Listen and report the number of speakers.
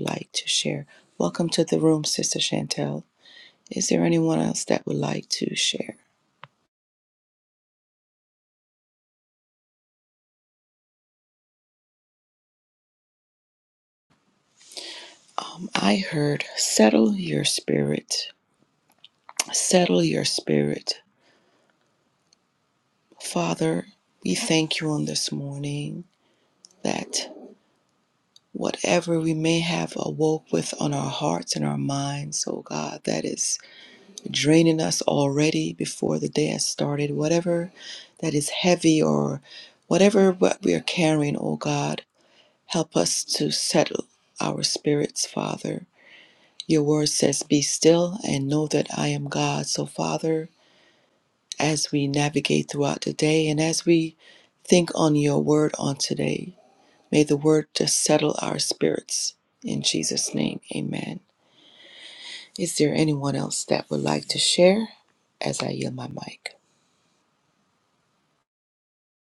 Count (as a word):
one